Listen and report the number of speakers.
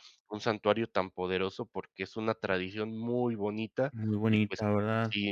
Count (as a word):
two